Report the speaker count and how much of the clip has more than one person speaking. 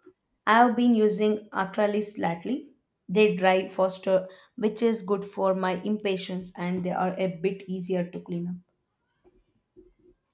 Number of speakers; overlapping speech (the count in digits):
1, no overlap